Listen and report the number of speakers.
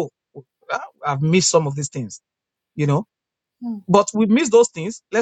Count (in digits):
1